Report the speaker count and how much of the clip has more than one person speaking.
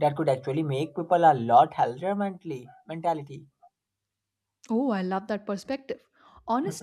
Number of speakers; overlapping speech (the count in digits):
2, no overlap